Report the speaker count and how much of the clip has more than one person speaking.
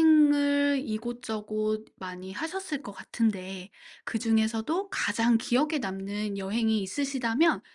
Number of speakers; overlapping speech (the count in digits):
1, no overlap